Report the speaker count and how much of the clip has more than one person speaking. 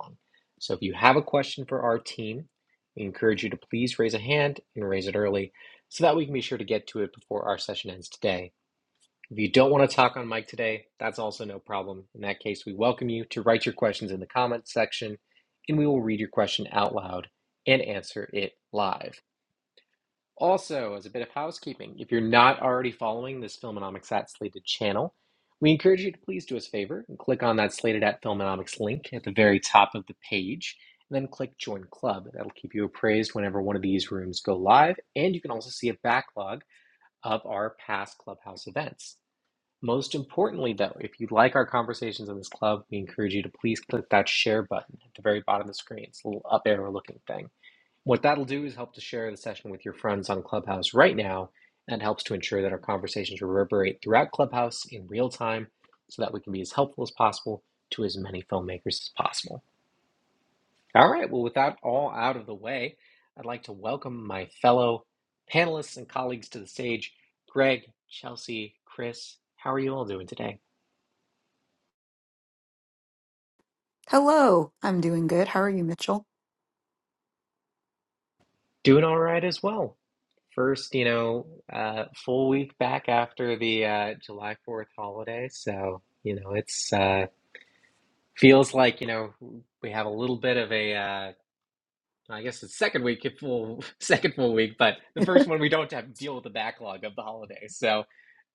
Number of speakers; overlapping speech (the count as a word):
two, no overlap